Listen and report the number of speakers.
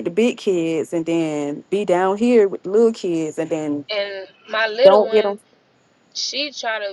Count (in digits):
2